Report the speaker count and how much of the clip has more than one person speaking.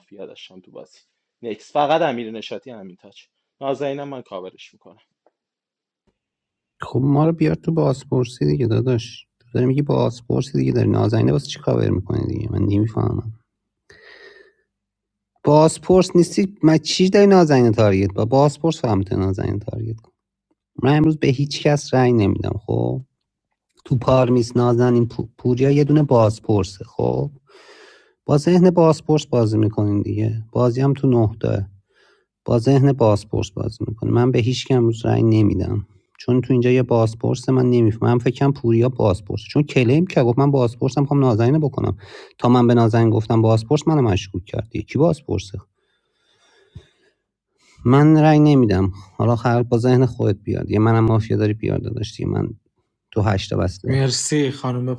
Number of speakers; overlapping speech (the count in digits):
3, under 1%